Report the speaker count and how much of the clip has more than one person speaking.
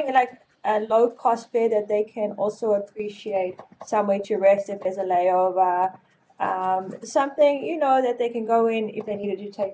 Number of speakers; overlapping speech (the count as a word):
one, no overlap